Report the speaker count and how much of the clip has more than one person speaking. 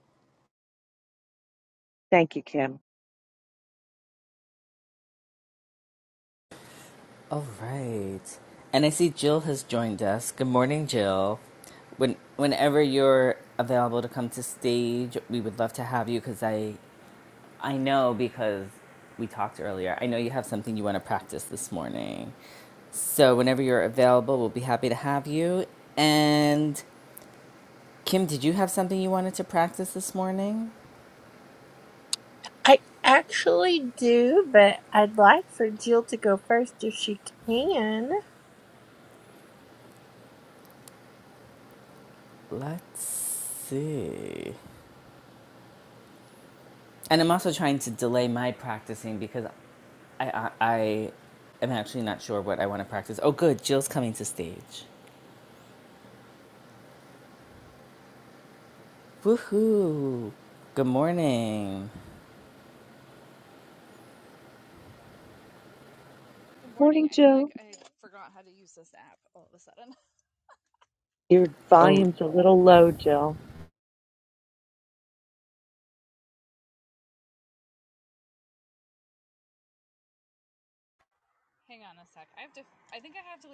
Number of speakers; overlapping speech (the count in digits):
4, about 1%